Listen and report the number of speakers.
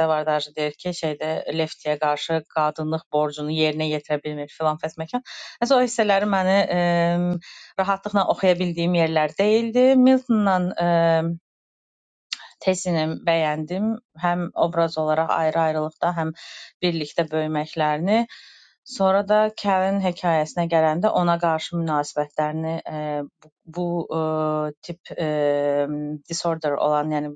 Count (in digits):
1